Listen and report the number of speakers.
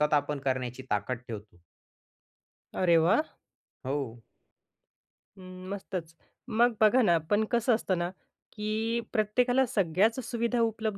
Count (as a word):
two